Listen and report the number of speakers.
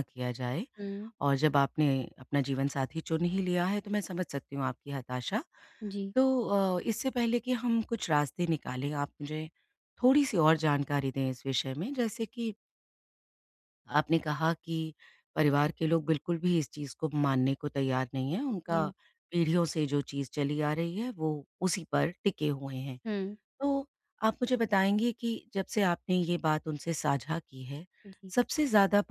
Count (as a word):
two